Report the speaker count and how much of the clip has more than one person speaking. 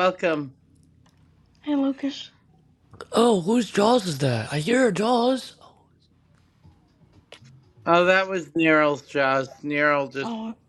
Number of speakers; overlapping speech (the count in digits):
3, about 1%